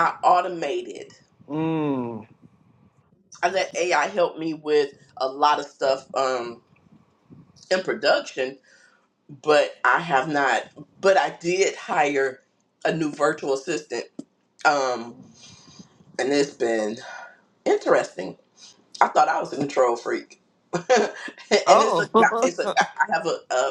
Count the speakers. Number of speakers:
2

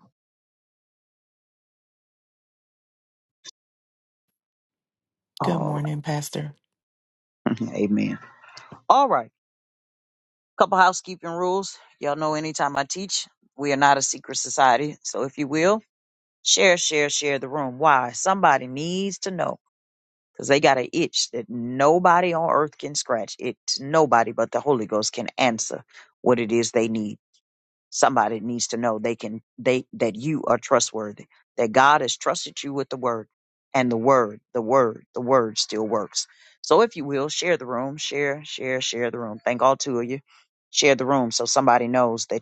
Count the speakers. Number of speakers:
2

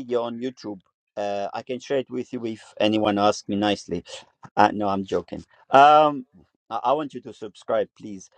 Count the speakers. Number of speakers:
1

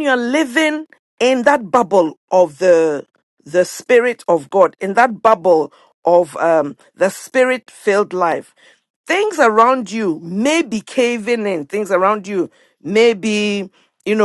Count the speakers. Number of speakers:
1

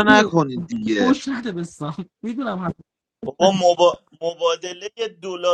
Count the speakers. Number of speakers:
3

